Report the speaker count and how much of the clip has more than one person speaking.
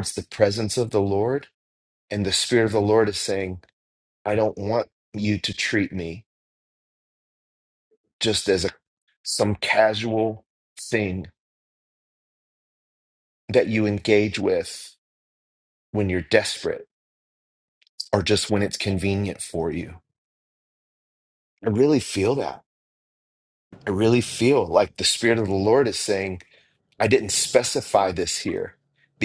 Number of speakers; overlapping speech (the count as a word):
one, no overlap